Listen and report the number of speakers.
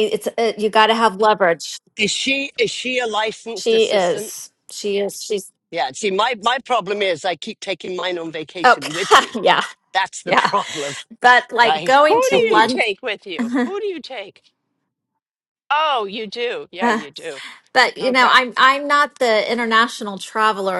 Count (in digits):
3